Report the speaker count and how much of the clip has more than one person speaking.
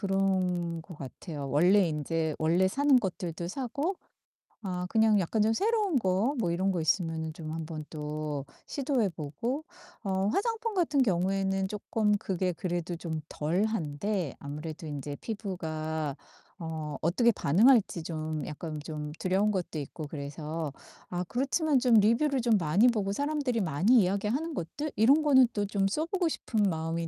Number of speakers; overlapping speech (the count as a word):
one, no overlap